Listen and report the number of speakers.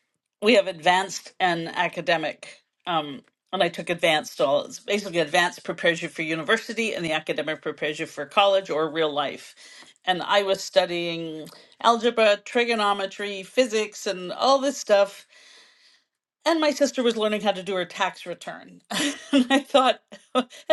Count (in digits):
1